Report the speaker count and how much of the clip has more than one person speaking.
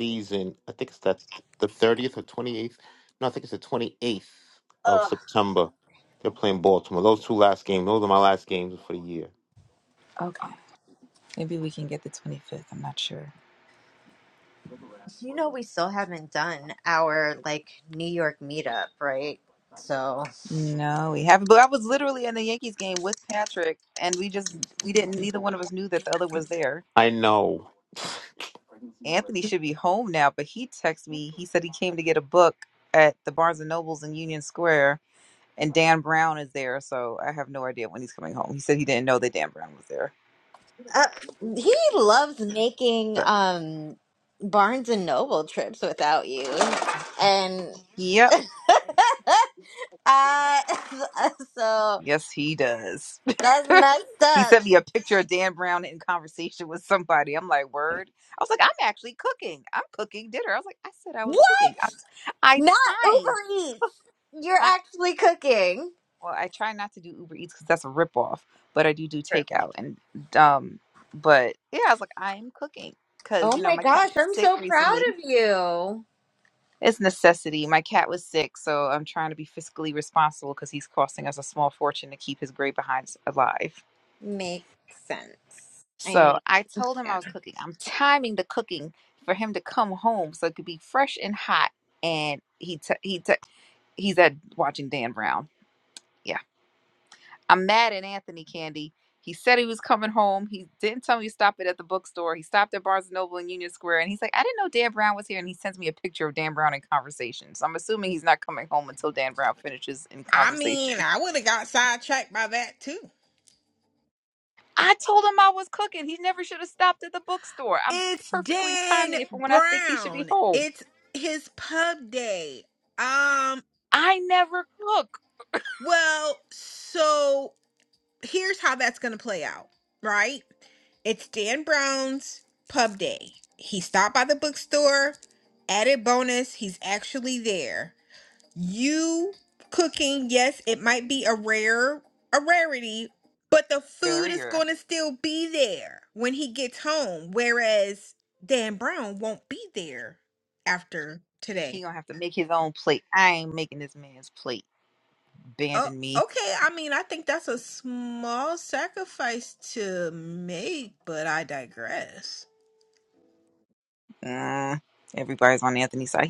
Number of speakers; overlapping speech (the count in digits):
4, about 5%